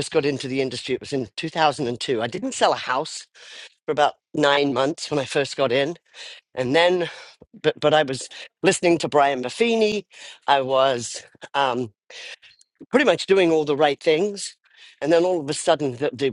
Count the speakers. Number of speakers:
1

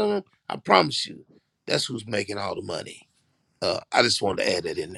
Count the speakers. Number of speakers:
1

